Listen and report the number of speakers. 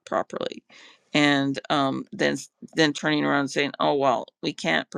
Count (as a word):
one